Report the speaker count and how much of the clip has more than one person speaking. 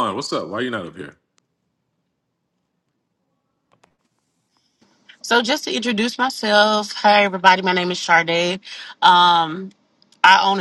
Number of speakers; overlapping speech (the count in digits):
2, no overlap